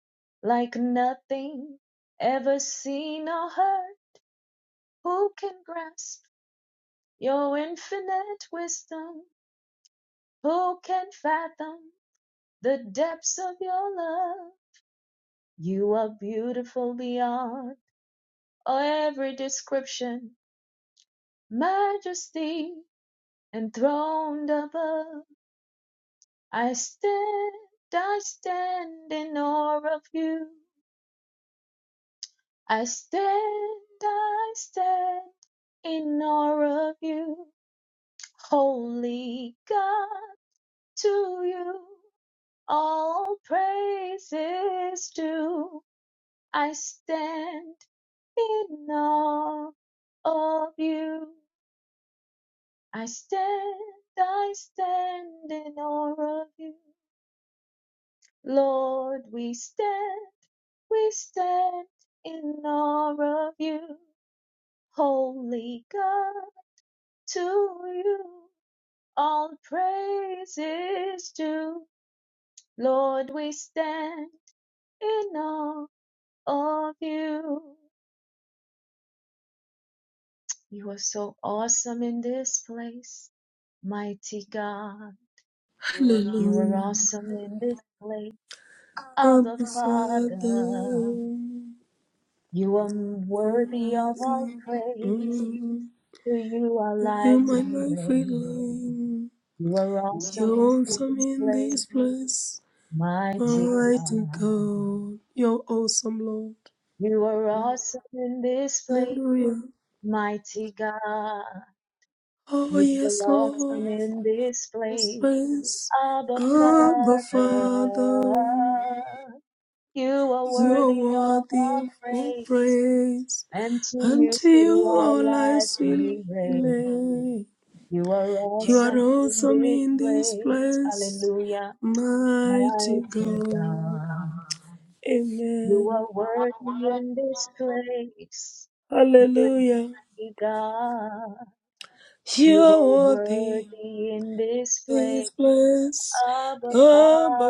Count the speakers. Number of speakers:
2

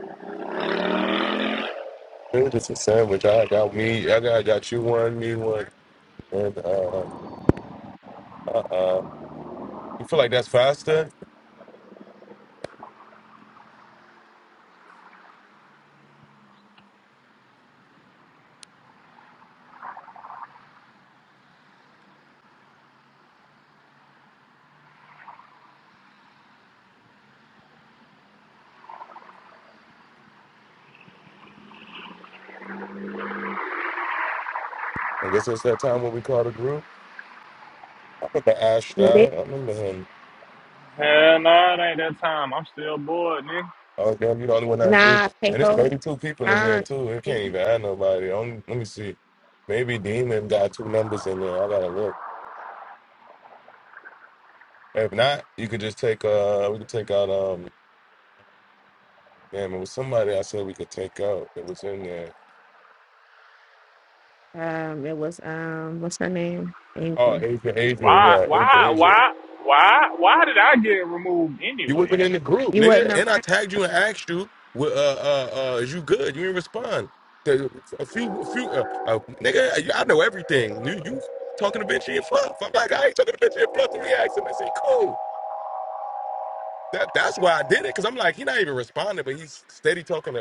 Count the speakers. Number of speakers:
3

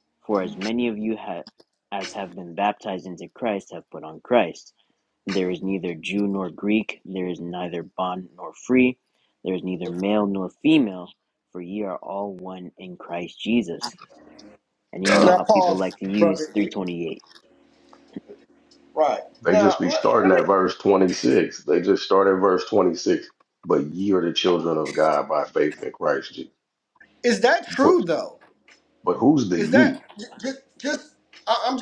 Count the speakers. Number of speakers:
3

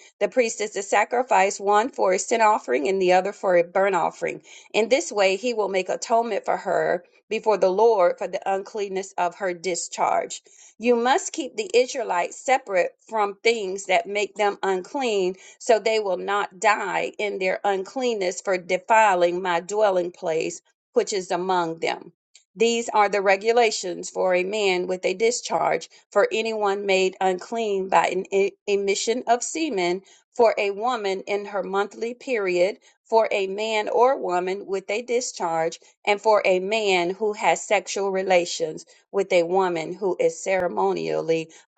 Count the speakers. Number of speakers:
1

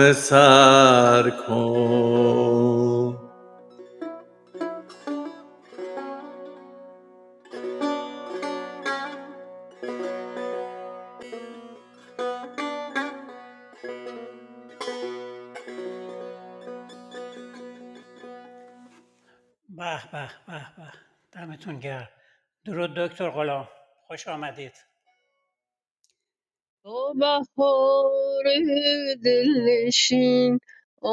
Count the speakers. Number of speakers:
3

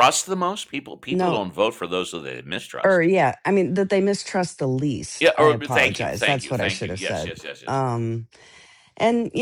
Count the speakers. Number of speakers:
2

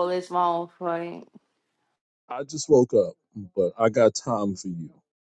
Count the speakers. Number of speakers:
2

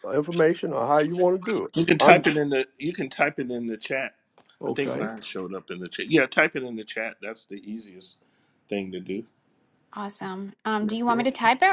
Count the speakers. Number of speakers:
3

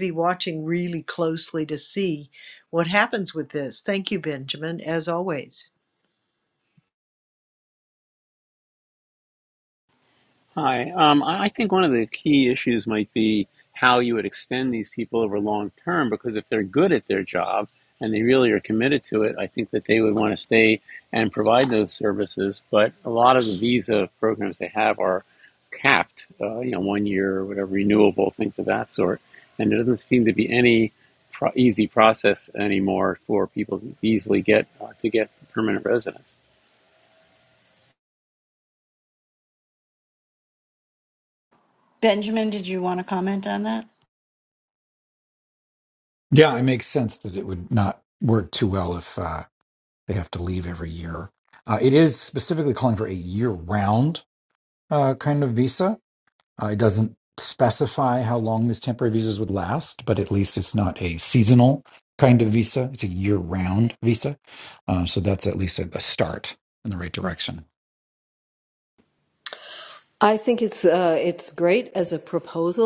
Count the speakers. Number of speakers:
5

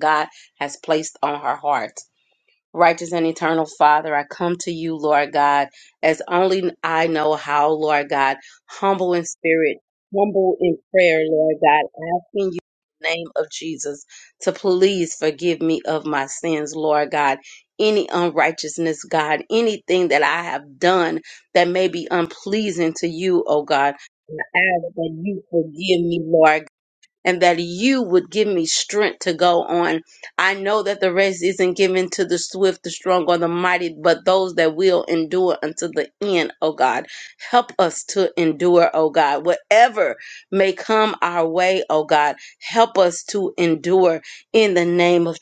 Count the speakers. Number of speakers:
1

